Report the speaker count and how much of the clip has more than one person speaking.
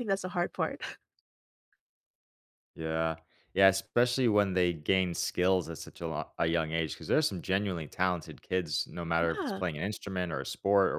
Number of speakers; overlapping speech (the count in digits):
2, about 4%